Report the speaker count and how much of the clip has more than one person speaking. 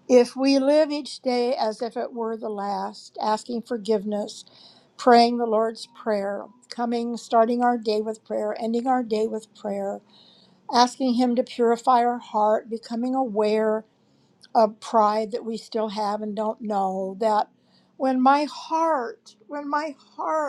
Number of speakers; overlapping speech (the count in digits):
1, no overlap